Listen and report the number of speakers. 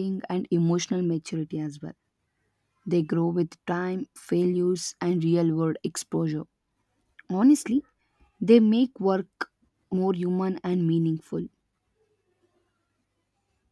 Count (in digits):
1